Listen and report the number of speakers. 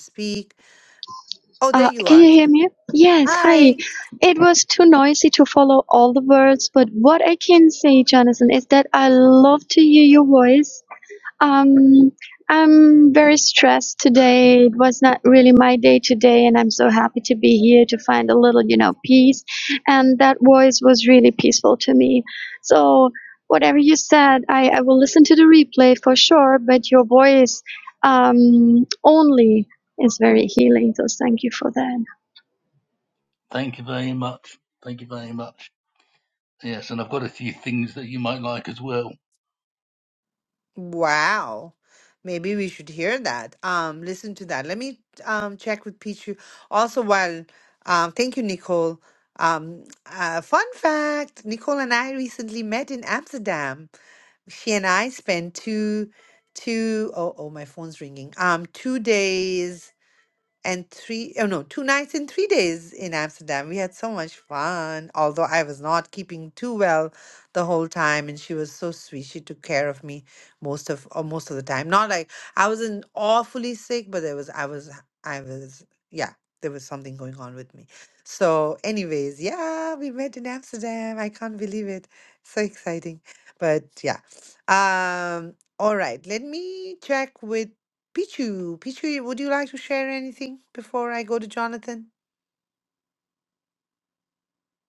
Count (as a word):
three